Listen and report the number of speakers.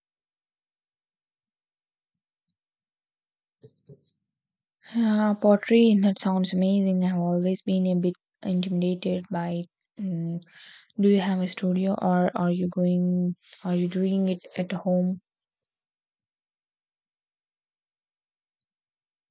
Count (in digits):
1